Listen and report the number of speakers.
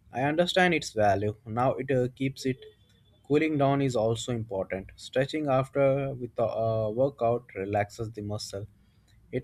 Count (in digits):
1